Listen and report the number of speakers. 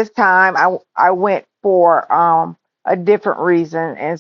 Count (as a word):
one